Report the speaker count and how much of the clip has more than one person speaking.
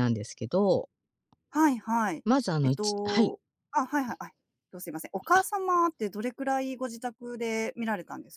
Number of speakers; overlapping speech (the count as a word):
two, about 9%